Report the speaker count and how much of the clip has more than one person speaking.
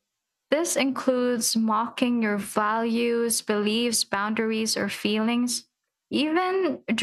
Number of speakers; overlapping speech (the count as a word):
one, no overlap